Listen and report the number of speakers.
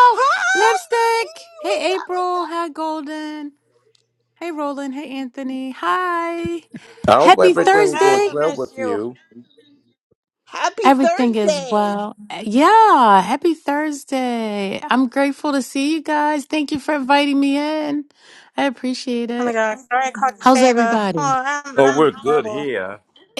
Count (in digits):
4